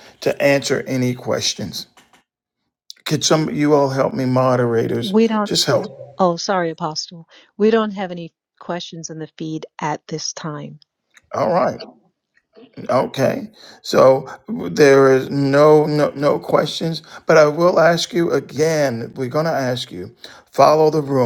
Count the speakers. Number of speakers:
2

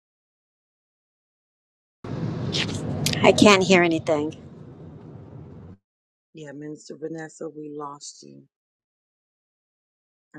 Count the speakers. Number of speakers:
2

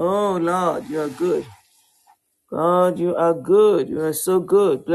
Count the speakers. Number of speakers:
1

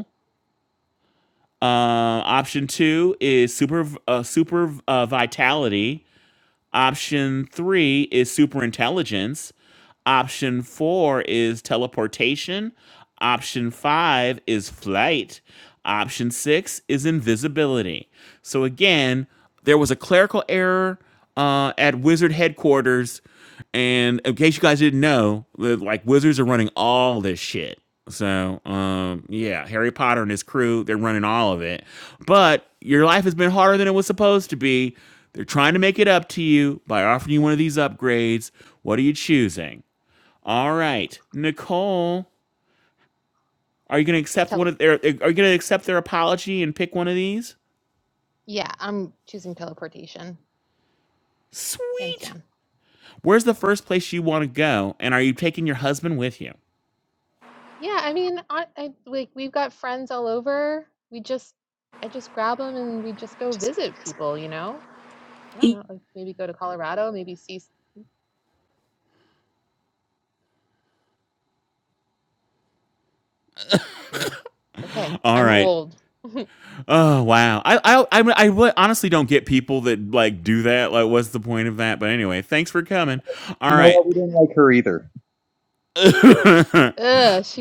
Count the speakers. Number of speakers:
3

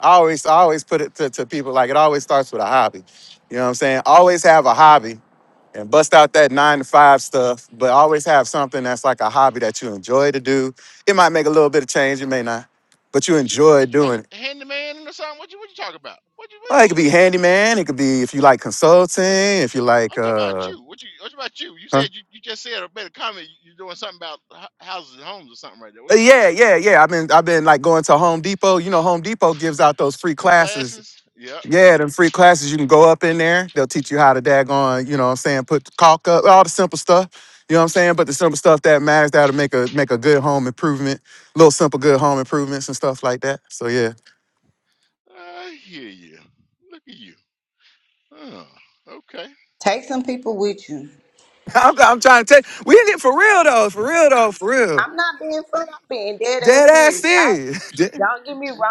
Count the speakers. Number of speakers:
3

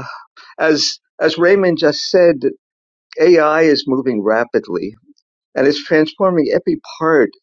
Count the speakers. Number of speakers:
1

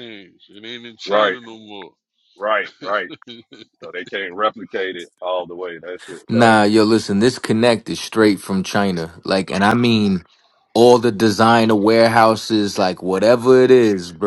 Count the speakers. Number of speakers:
3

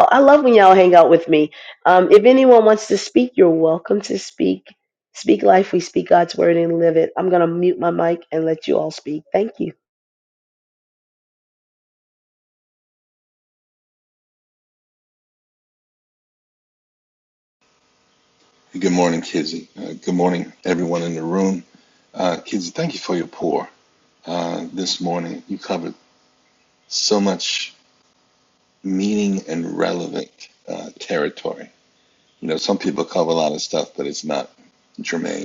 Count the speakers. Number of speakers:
2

